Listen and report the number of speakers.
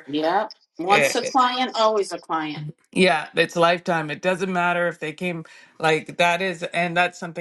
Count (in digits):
2